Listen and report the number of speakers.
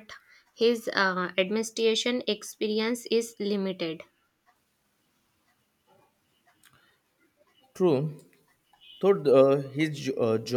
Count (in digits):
2